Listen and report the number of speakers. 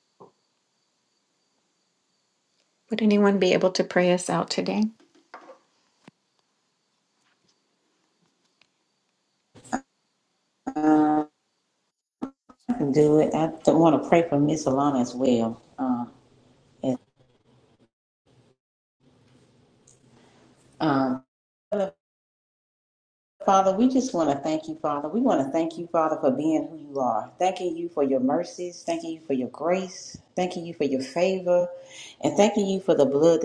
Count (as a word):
two